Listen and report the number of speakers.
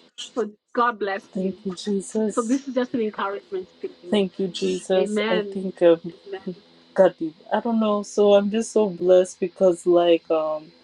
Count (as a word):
two